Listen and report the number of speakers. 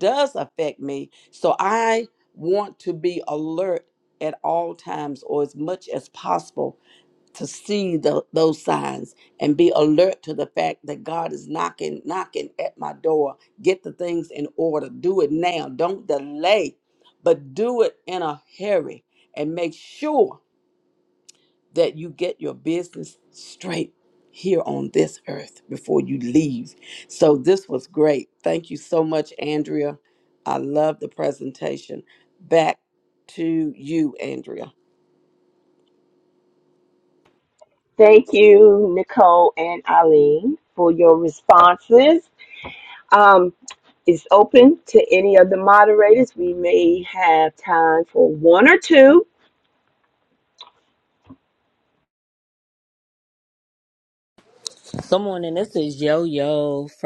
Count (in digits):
3